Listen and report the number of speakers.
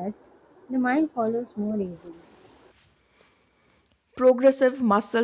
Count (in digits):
2